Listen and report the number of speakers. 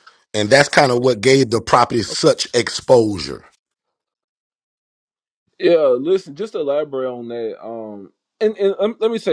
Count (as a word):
two